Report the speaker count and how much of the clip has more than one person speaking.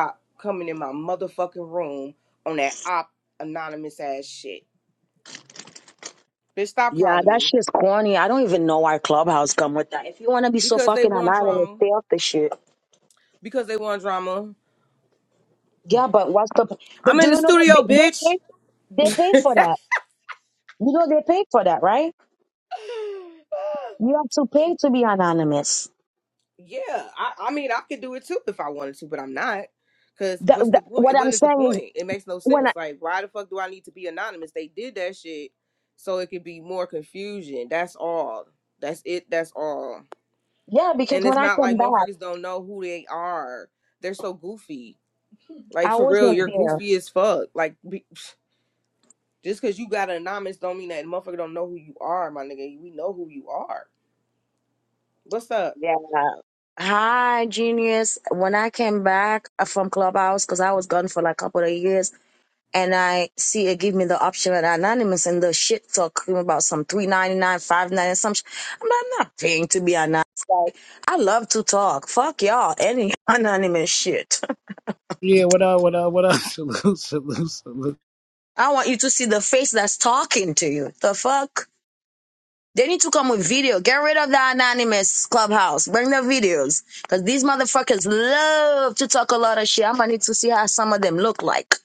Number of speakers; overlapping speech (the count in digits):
3, about 7%